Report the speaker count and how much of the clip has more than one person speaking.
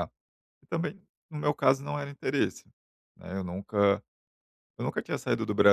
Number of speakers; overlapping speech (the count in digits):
1, no overlap